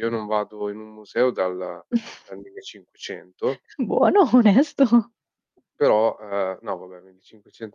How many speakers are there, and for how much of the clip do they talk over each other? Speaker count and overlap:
two, no overlap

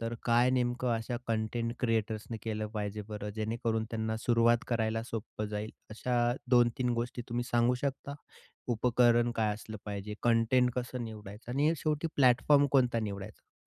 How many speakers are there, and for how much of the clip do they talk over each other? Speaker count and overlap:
one, no overlap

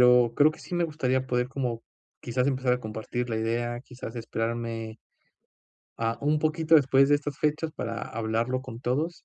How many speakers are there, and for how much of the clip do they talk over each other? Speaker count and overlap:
one, no overlap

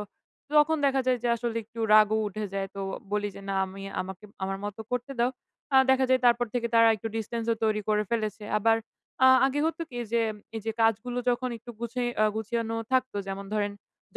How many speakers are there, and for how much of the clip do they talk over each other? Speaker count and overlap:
one, no overlap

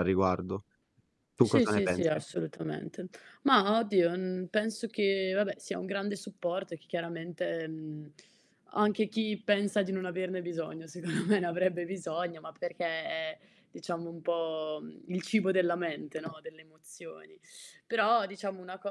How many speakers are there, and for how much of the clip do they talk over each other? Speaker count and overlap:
two, about 4%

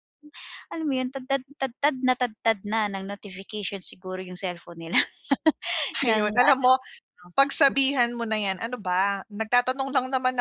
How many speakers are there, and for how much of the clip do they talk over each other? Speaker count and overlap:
two, about 7%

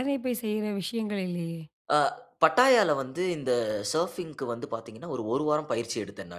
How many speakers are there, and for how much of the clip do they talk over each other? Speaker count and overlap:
two, no overlap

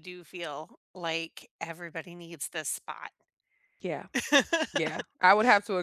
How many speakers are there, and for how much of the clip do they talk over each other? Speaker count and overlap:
two, no overlap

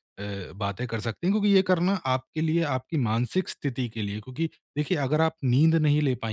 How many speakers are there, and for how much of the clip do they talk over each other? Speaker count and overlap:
one, no overlap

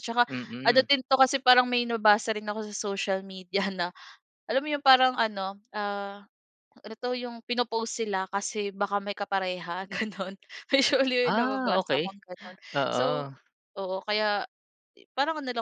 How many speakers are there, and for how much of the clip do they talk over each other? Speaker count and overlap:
two, about 8%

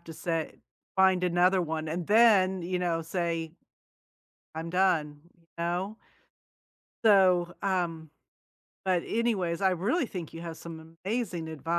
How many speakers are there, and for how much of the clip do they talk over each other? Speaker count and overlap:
one, no overlap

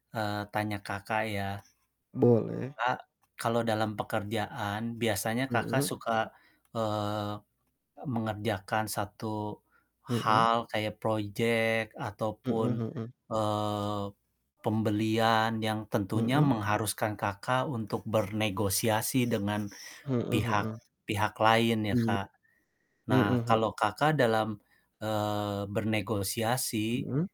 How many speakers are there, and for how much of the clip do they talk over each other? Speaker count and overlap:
two, about 9%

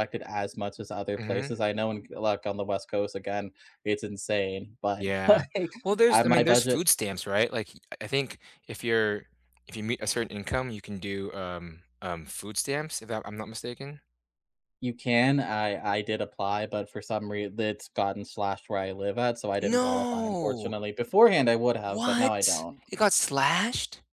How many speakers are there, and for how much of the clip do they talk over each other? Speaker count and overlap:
two, about 14%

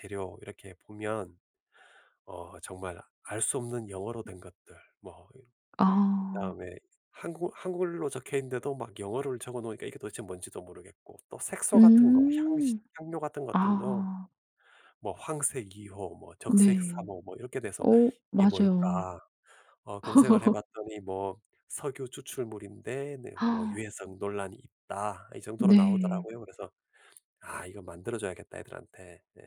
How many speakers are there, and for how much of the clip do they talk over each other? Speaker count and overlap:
two, about 12%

